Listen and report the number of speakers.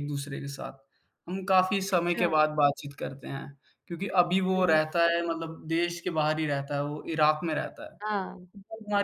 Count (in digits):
2